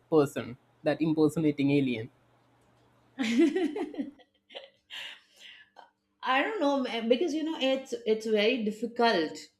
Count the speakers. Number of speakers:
2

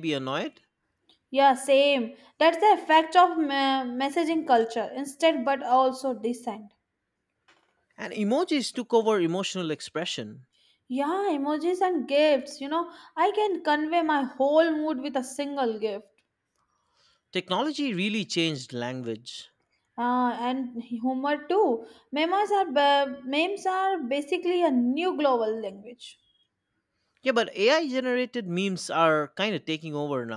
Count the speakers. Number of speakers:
2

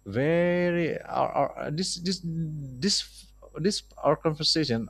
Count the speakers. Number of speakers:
1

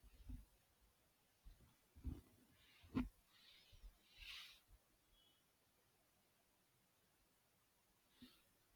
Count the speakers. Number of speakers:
0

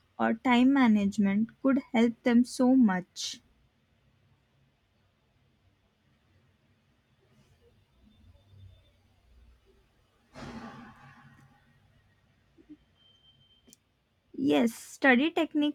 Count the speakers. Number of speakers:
1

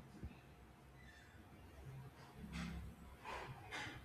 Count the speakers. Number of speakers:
0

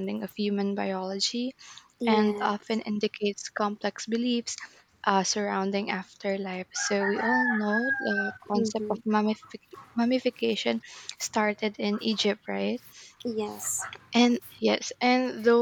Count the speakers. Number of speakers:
2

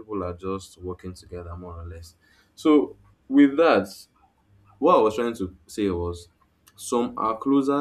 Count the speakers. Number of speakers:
1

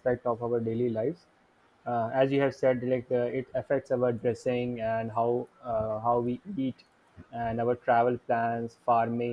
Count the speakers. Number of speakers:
1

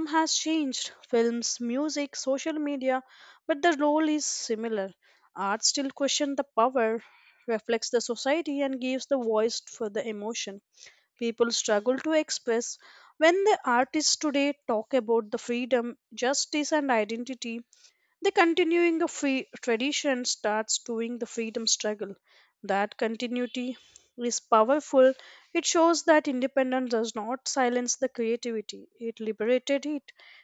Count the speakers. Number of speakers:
1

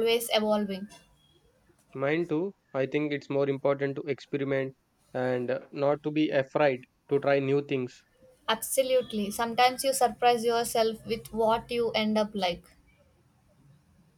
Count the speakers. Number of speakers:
2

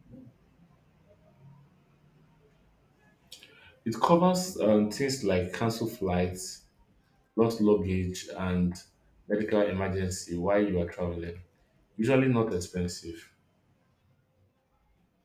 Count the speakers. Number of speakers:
1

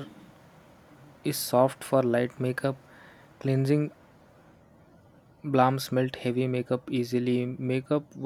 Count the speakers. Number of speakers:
1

